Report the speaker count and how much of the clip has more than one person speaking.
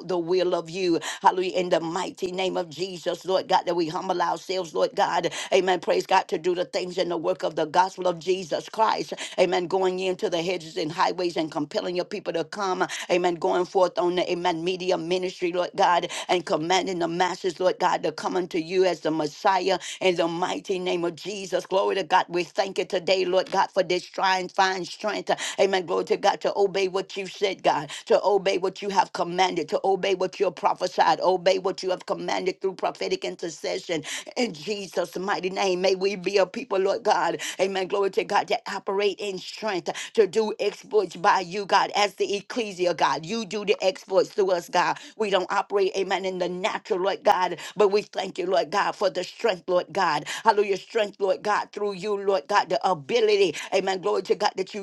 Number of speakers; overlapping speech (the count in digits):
1, no overlap